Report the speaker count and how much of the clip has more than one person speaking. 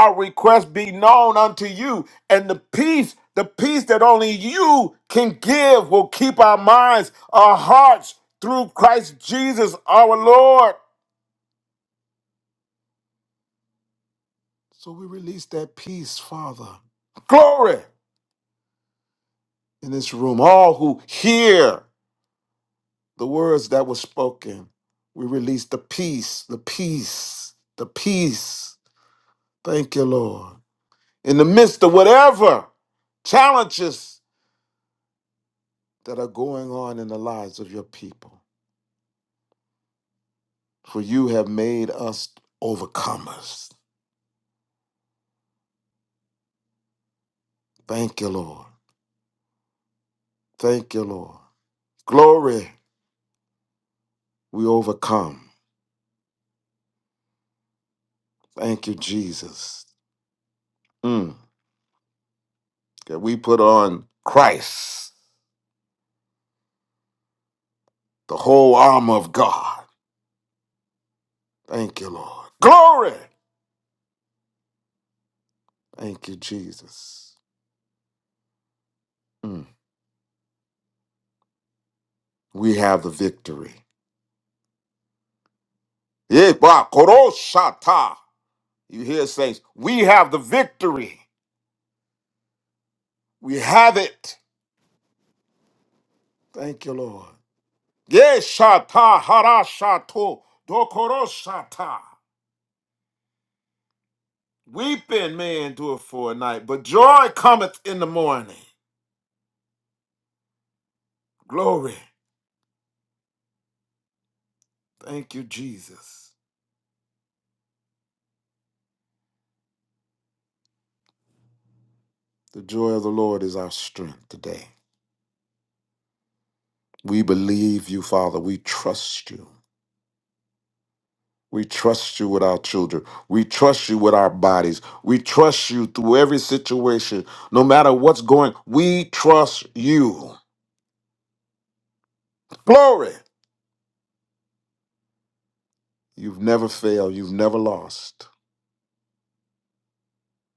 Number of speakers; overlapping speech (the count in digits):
1, no overlap